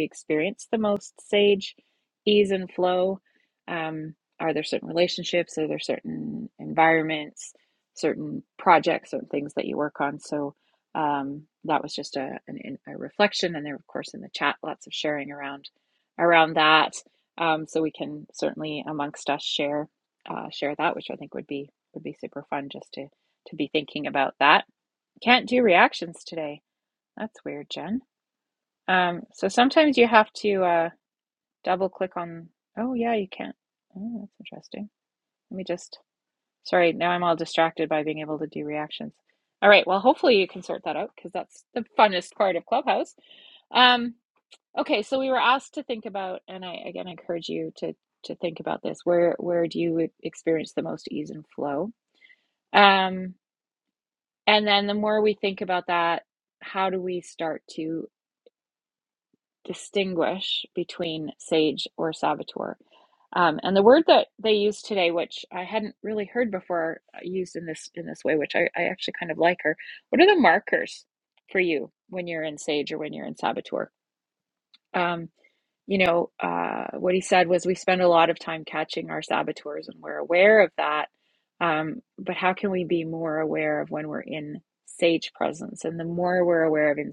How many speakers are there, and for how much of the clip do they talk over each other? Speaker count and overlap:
1, no overlap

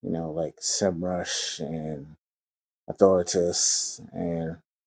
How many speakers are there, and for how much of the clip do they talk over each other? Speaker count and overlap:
1, no overlap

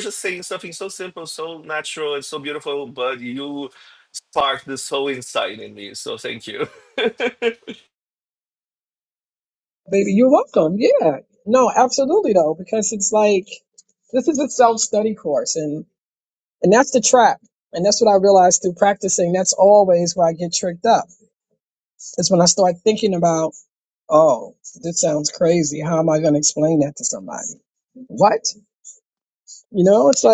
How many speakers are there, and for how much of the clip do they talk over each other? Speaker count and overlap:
2, no overlap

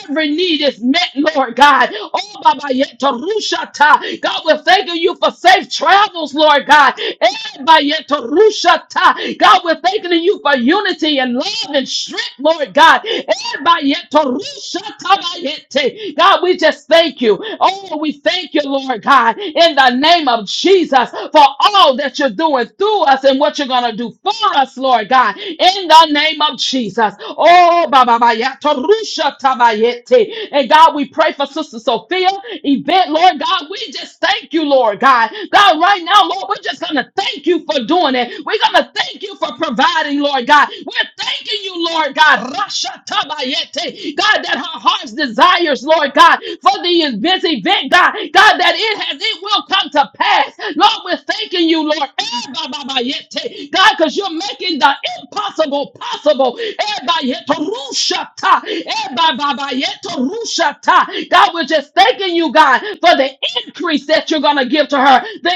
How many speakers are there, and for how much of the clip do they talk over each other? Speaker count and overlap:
1, no overlap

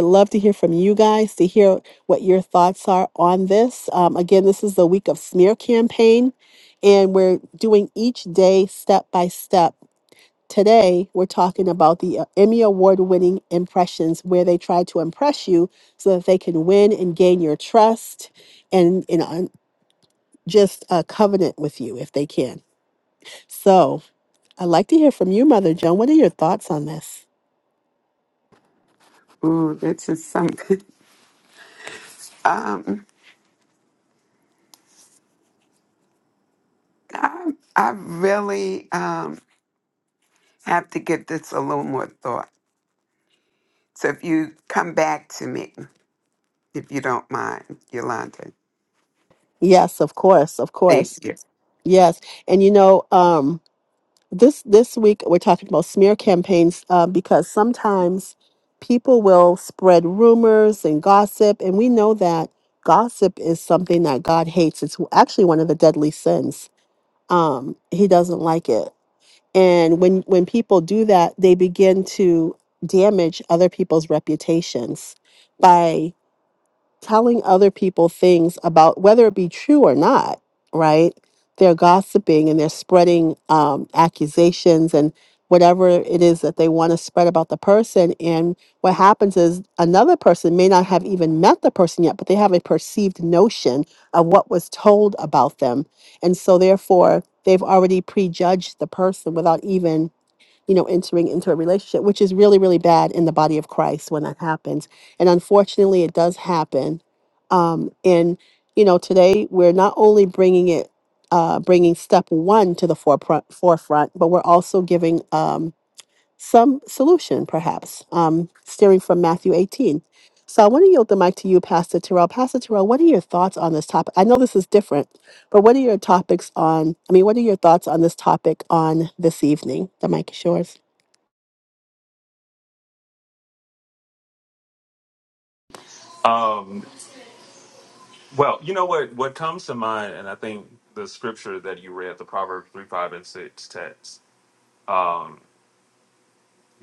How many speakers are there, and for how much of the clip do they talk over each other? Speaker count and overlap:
3, under 1%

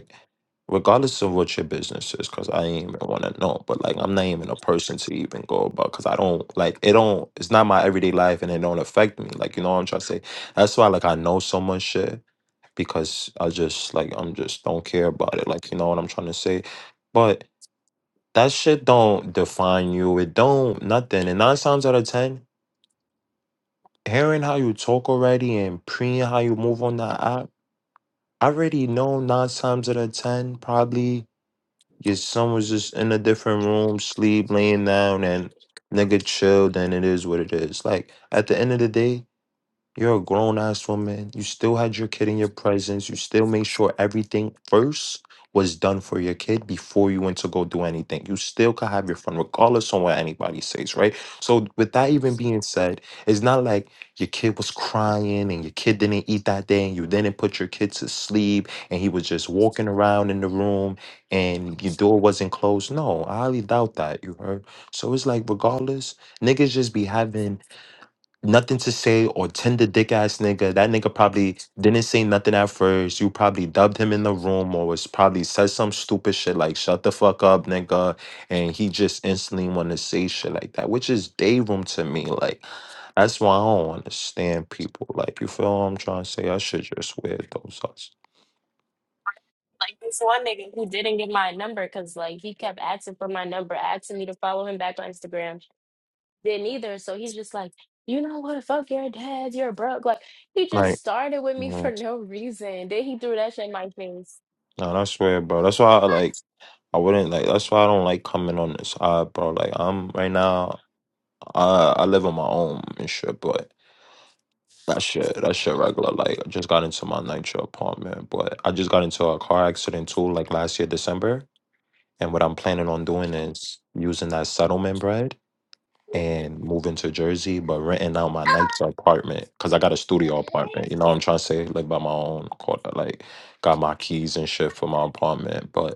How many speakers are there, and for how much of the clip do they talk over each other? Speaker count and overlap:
2, under 1%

